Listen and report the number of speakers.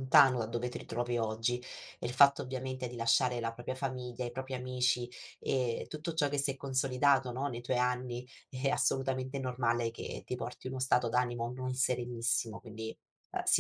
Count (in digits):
1